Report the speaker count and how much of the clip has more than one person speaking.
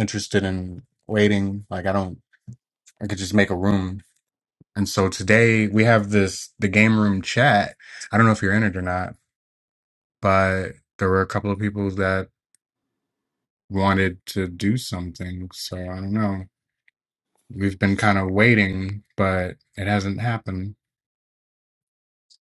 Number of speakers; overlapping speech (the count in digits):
1, no overlap